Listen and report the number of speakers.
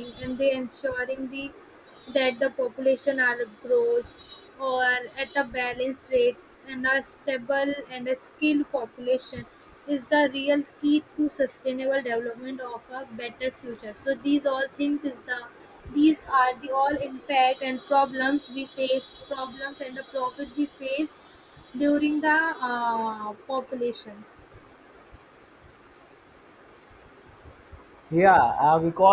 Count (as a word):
two